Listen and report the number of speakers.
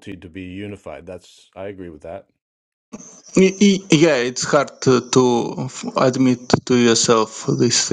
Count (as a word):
two